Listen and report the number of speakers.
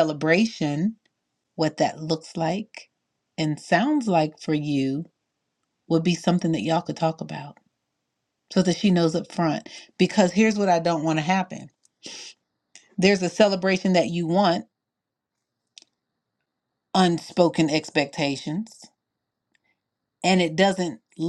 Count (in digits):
1